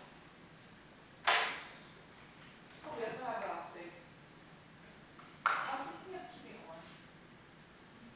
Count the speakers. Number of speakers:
one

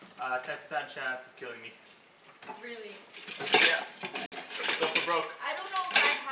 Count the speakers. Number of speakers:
two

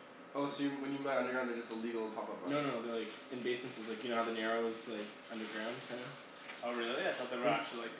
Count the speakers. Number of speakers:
three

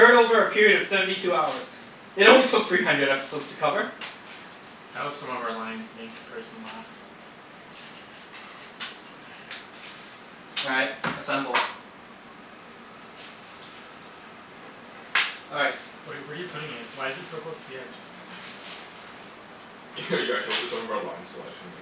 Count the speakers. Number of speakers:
three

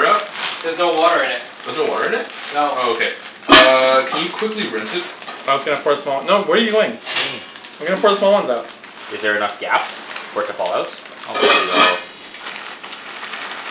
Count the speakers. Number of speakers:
four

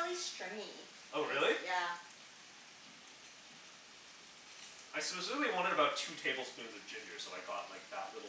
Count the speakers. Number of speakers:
two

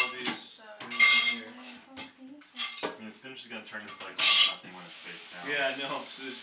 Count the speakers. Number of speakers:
three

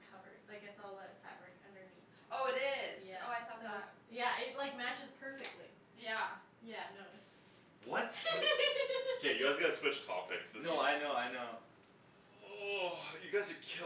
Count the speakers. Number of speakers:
four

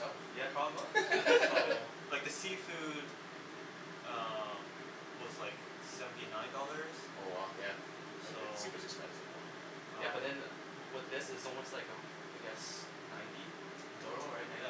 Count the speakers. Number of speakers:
three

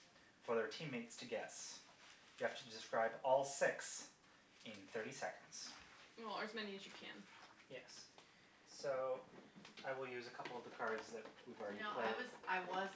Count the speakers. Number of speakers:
three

